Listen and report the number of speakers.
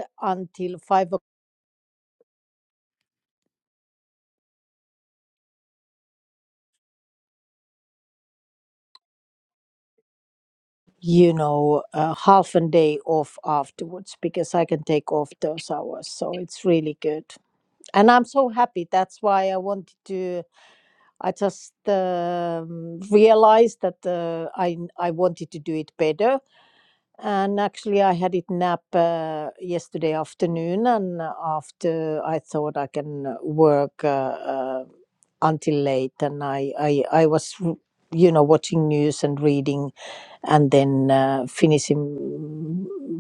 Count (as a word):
one